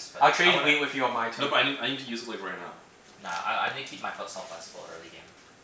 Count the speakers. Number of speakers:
3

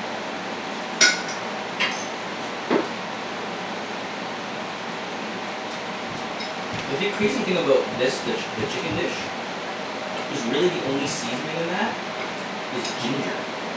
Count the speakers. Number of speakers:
1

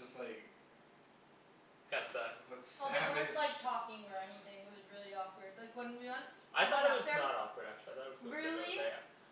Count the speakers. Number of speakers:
3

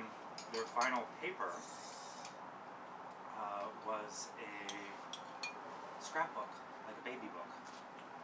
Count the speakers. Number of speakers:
1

